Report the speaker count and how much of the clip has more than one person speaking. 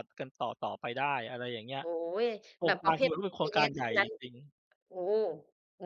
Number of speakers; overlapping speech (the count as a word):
two, about 21%